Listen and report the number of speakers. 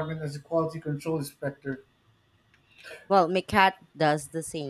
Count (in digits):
2